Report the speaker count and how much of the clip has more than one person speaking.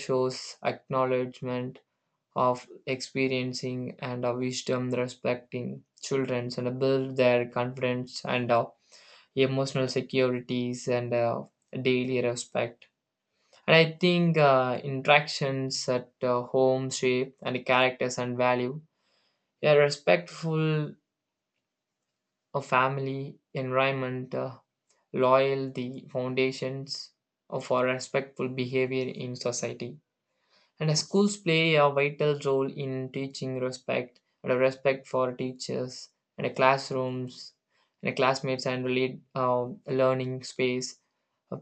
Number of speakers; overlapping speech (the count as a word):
one, no overlap